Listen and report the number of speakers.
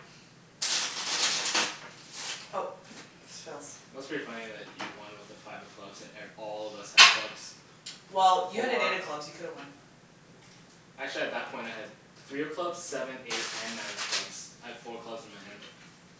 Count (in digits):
2